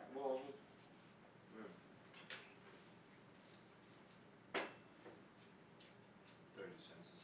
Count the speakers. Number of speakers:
one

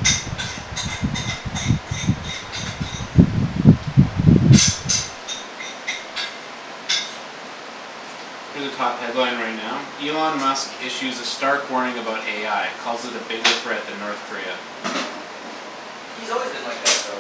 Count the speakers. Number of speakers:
two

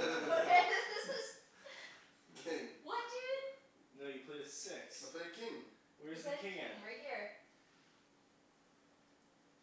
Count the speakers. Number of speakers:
three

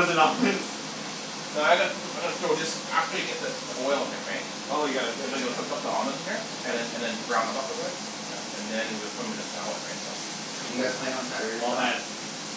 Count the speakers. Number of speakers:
three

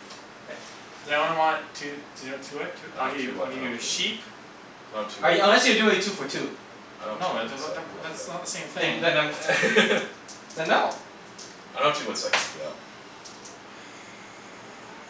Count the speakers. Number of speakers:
three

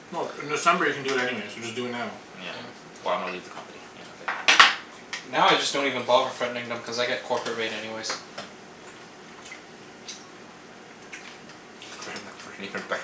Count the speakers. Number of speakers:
three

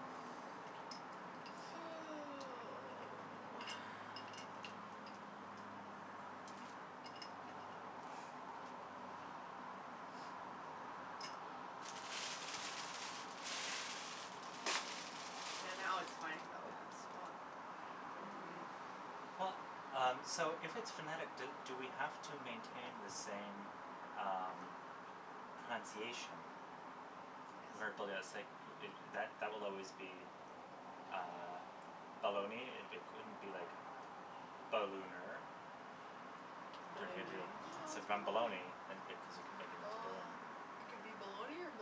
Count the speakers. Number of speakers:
three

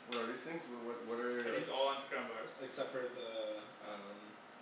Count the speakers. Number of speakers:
three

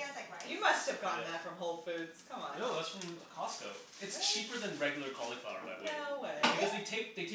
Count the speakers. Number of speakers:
three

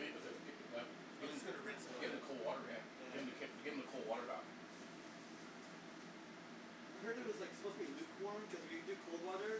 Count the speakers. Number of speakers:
two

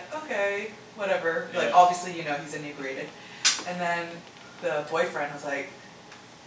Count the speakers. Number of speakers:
one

